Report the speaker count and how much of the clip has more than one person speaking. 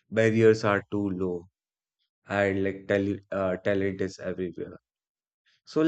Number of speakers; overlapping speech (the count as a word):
one, no overlap